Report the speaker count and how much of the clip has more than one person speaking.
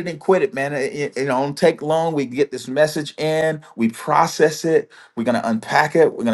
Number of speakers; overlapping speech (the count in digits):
1, no overlap